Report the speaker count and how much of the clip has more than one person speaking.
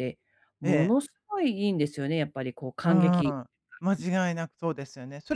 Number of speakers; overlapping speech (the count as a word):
two, about 15%